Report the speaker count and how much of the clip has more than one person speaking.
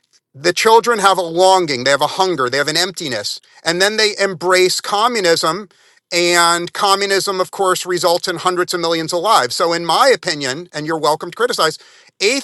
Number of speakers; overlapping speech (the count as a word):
one, no overlap